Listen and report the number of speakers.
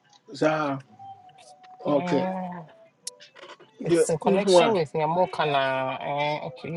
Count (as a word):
two